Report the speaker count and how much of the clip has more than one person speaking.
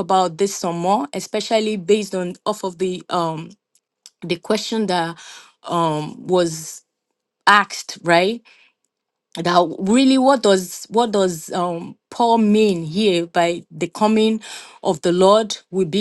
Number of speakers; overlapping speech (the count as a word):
one, no overlap